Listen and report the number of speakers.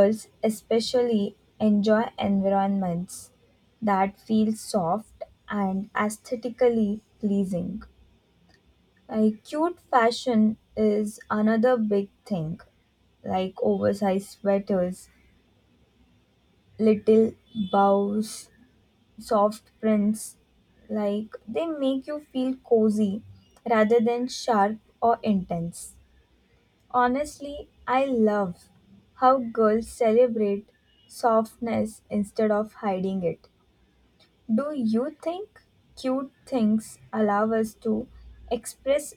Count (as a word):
one